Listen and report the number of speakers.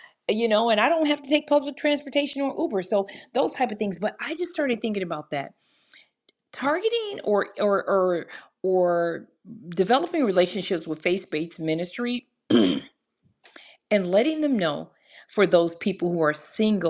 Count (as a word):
one